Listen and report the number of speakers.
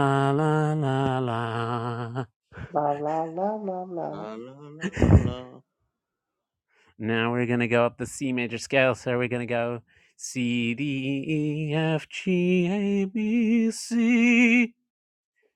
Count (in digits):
3